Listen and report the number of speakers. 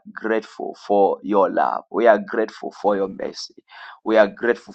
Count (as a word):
one